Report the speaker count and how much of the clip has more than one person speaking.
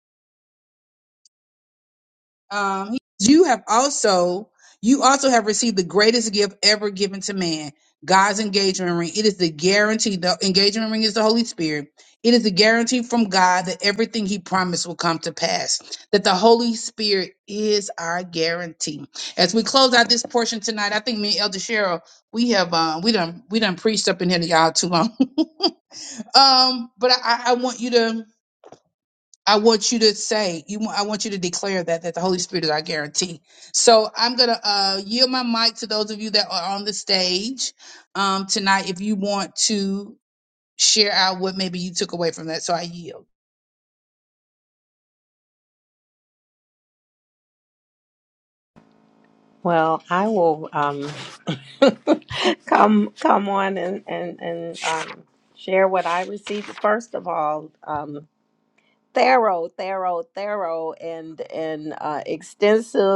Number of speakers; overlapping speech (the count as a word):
two, no overlap